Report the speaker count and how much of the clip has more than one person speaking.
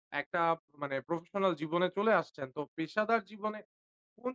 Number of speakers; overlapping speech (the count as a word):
one, no overlap